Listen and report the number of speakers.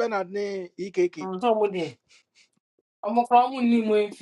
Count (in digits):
2